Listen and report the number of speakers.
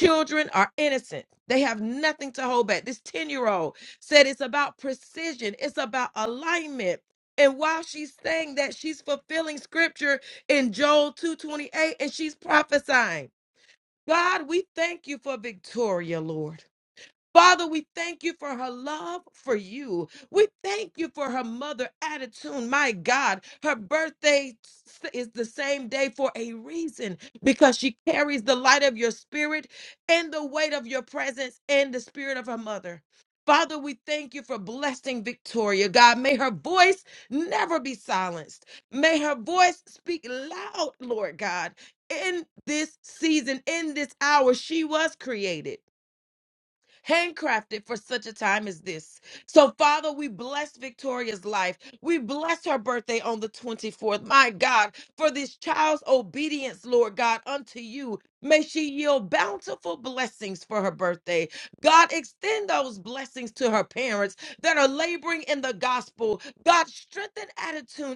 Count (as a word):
one